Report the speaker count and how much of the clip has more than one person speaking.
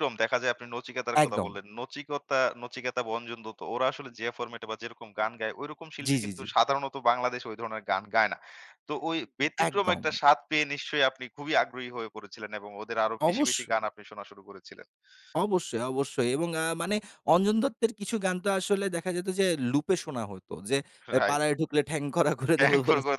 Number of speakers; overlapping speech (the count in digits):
2, about 9%